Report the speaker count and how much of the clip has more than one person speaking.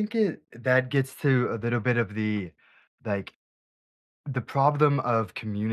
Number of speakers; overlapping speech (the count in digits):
1, no overlap